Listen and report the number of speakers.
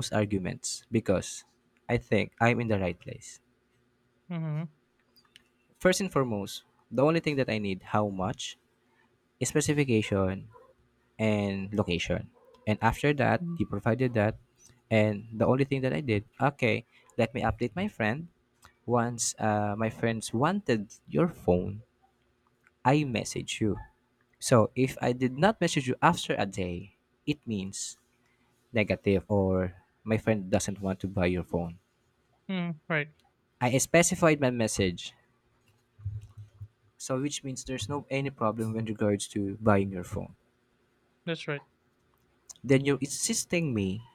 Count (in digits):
2